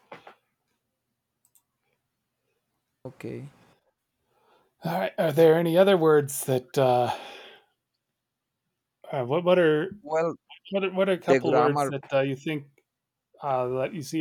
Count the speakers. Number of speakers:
two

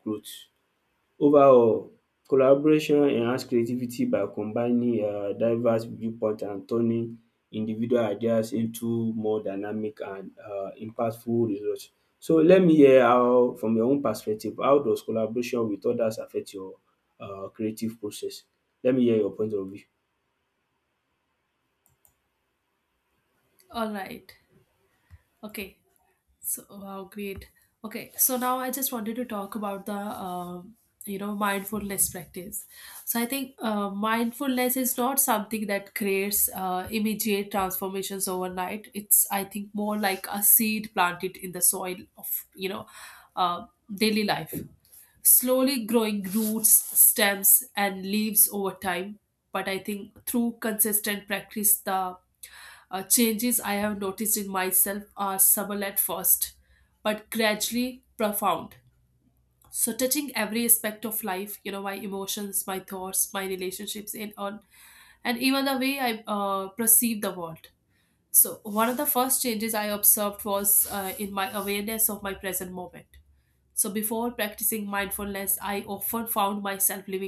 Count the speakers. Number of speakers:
two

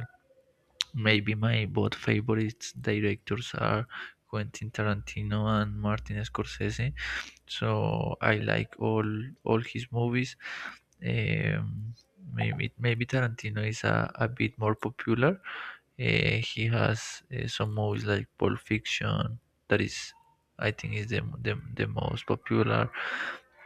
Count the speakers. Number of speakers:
one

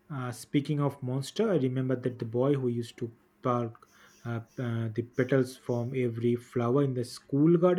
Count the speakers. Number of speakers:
one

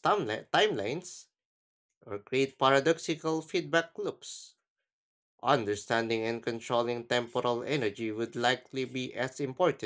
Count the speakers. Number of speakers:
one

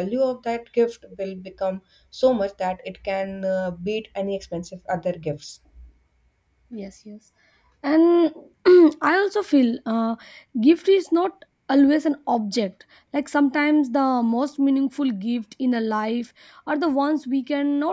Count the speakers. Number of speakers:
two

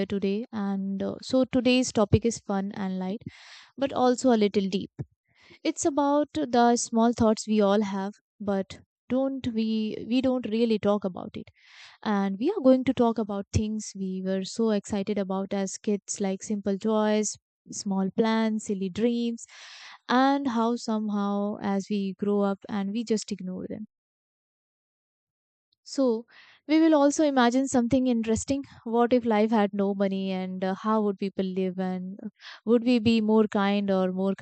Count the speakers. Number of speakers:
one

